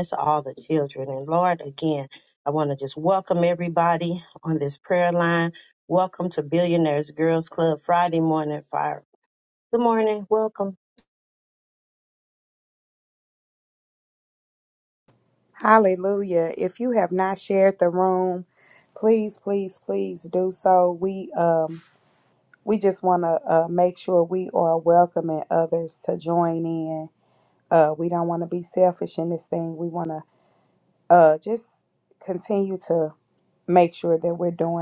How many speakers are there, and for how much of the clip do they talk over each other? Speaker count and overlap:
2, no overlap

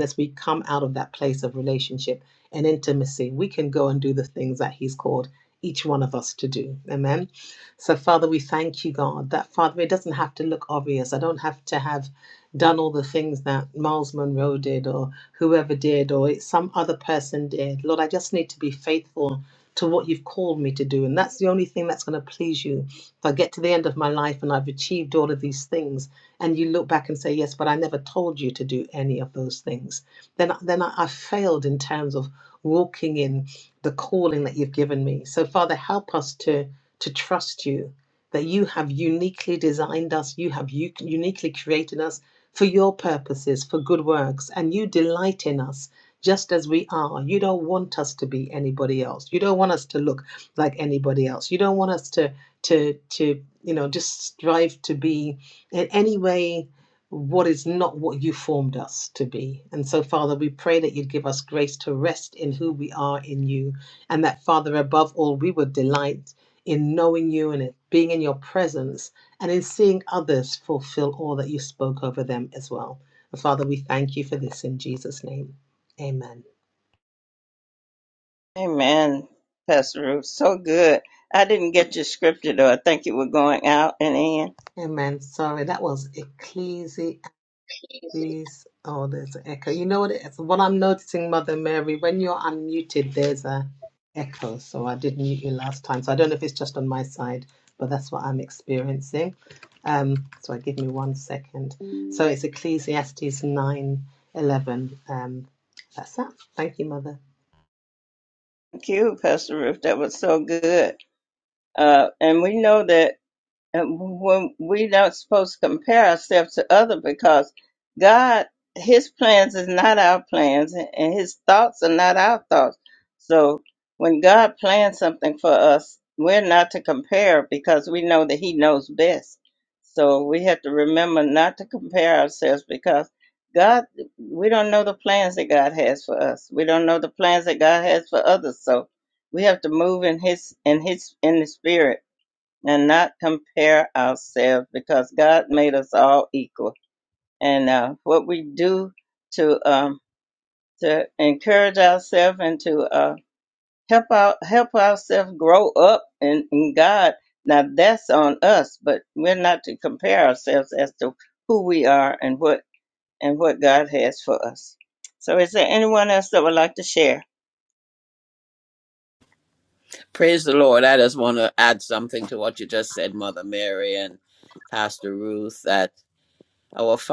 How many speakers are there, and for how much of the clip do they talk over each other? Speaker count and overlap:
3, no overlap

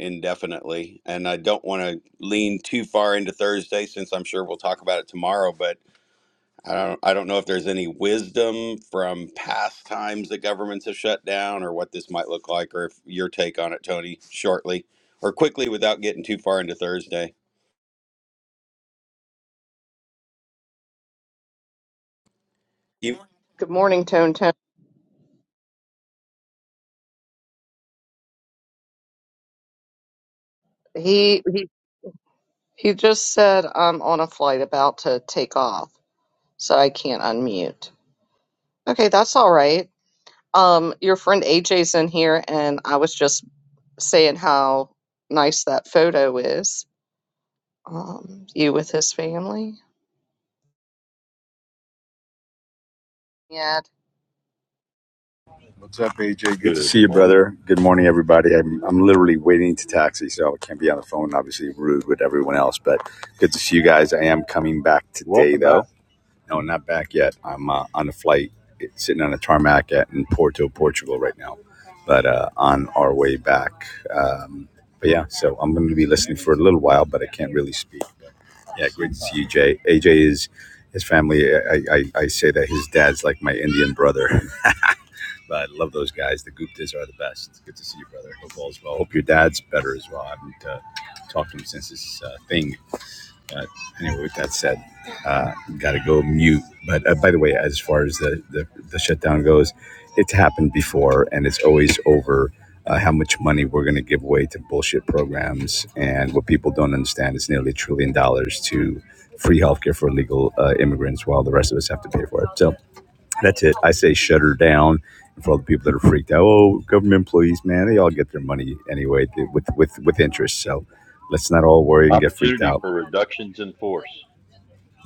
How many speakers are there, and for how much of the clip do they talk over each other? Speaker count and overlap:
4, about 2%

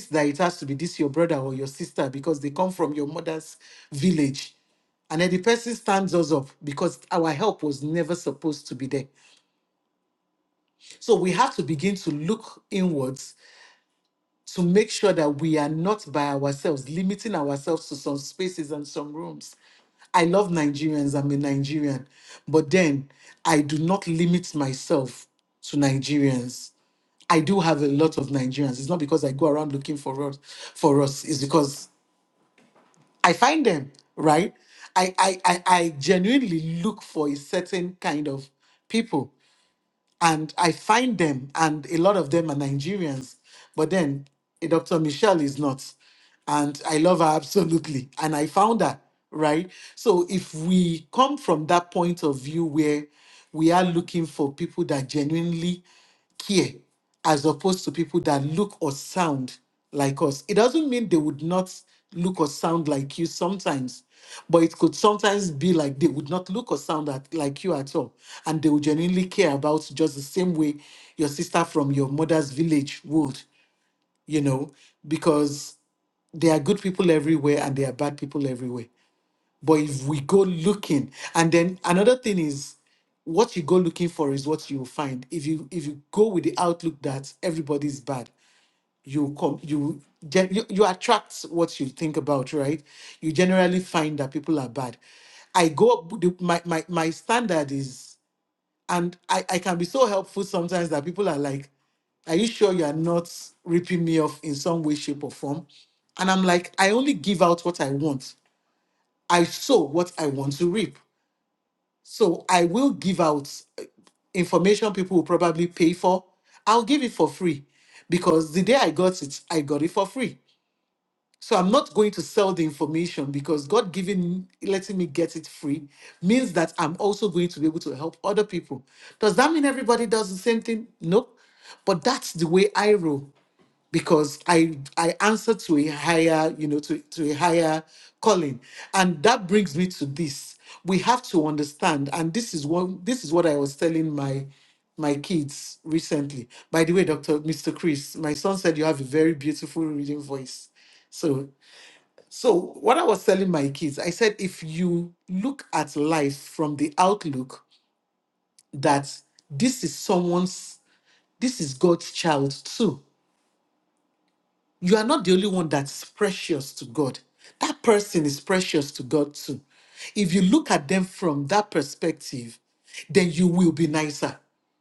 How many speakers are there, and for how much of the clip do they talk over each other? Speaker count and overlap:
1, no overlap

